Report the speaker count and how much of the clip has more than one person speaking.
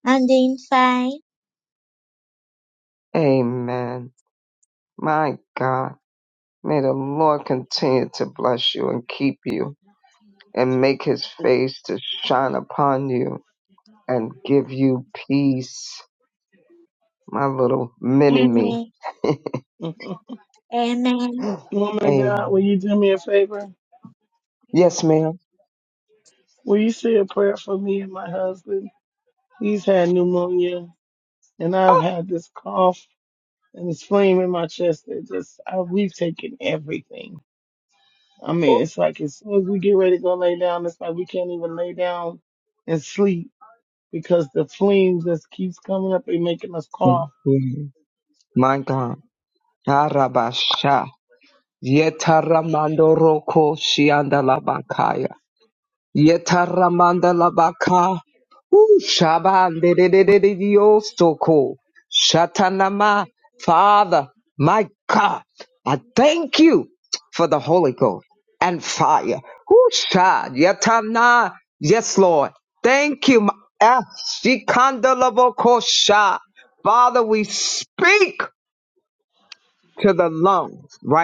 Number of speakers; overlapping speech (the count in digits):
3, about 2%